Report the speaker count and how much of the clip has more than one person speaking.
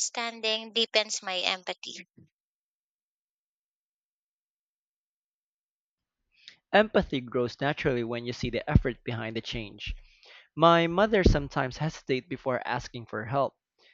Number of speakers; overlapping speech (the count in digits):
2, no overlap